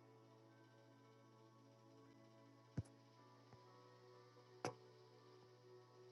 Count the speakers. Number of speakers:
zero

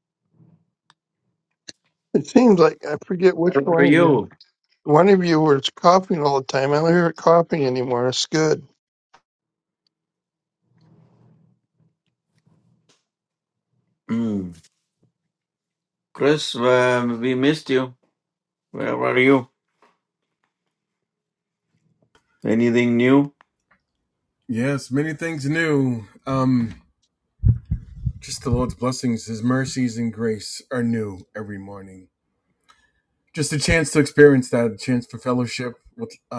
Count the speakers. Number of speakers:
three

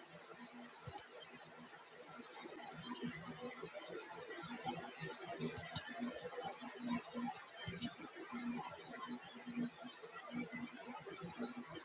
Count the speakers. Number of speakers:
zero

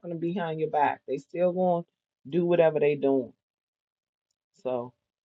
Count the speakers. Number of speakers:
one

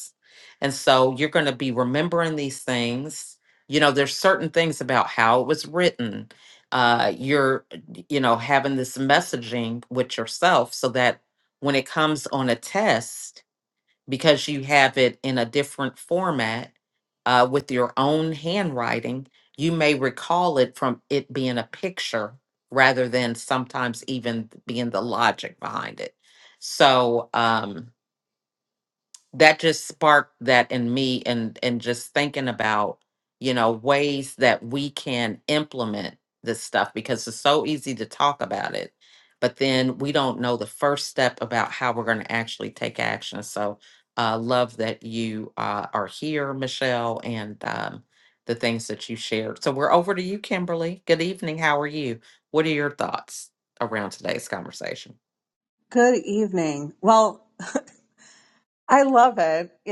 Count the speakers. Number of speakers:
two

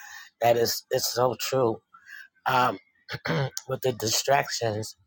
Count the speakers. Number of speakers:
one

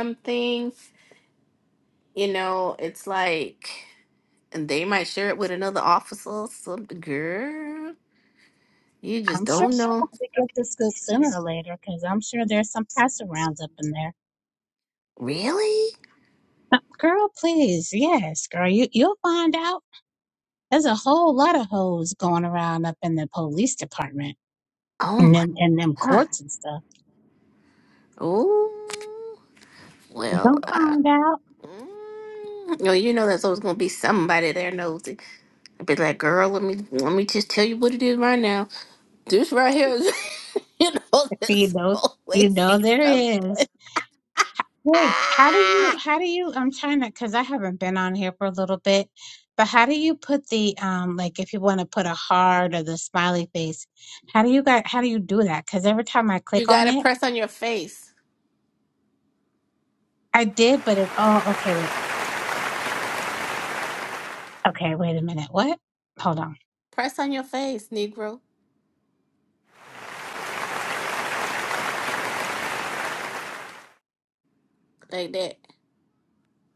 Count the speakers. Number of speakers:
two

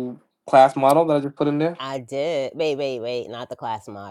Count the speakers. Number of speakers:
two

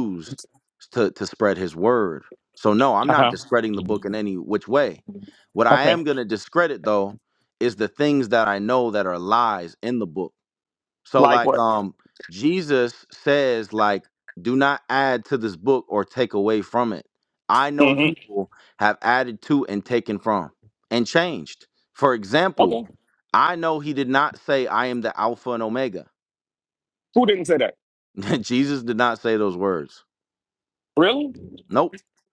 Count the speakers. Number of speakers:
two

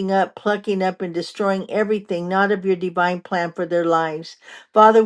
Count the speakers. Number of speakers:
one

